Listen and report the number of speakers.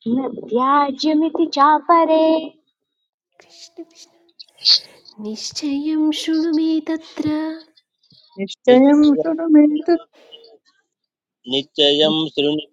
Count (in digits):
4